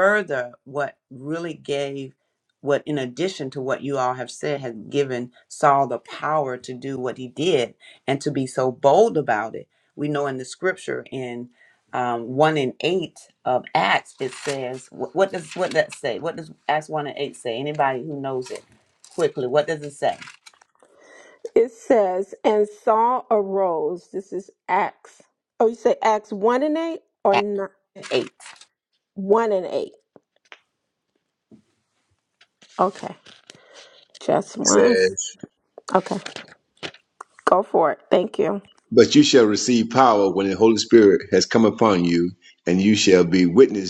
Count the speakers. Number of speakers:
3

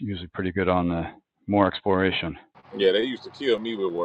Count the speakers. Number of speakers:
2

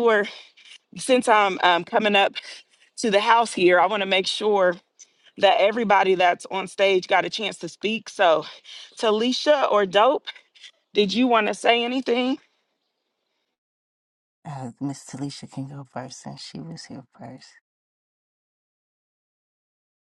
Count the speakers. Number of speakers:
2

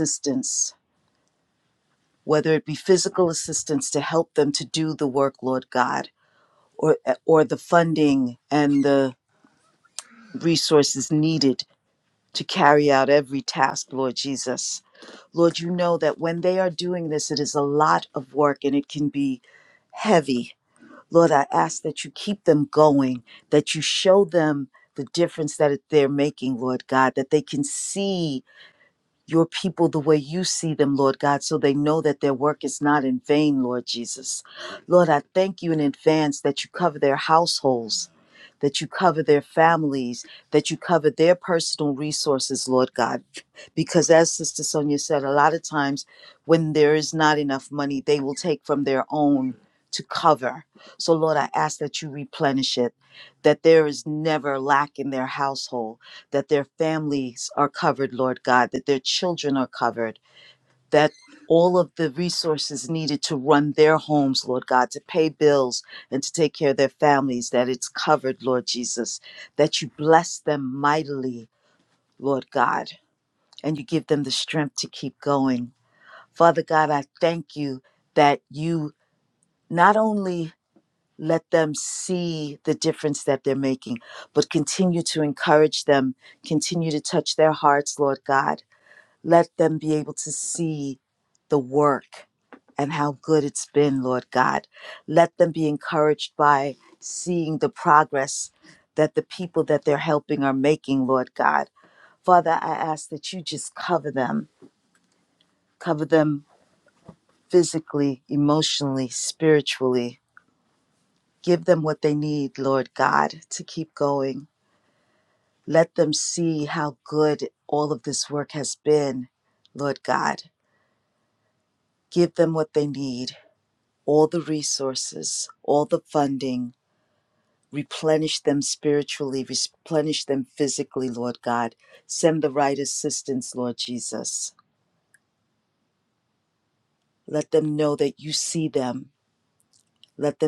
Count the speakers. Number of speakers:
1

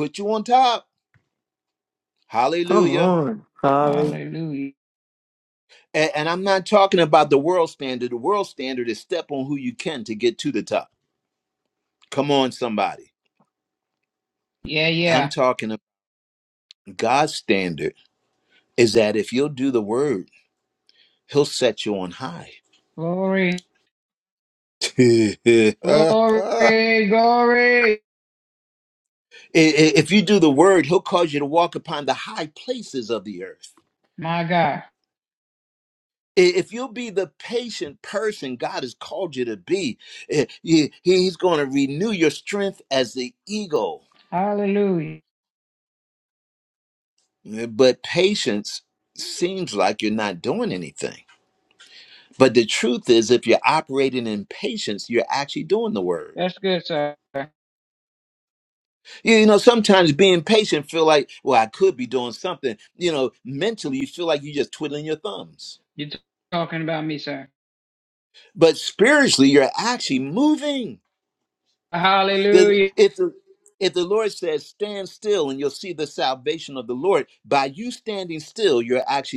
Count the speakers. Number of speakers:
3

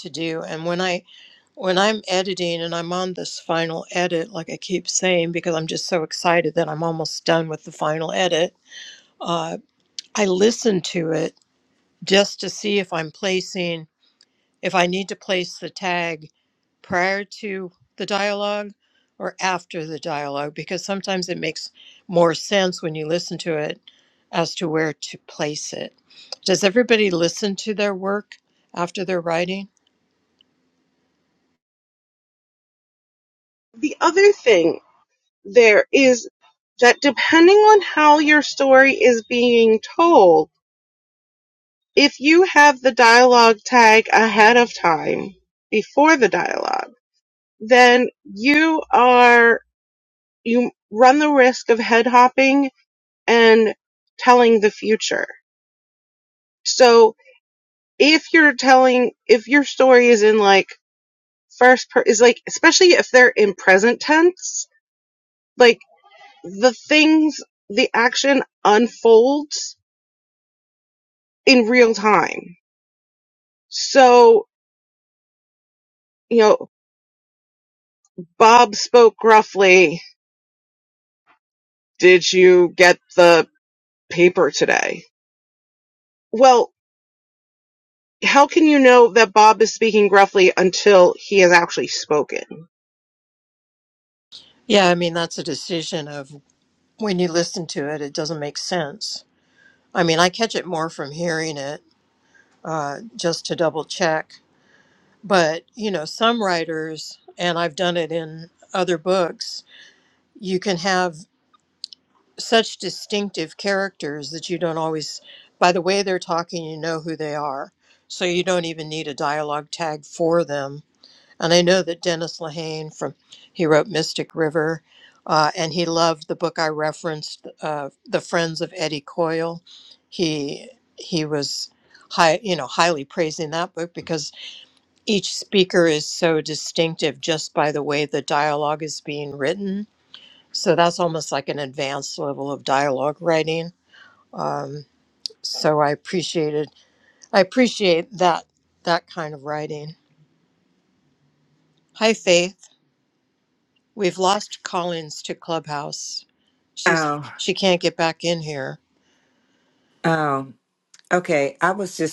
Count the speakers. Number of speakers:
3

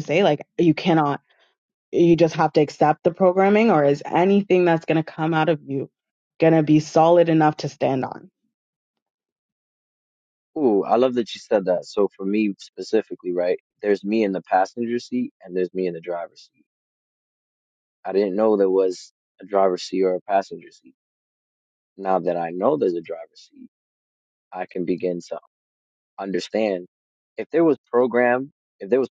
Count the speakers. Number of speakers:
2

